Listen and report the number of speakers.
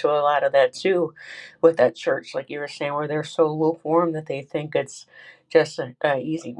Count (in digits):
1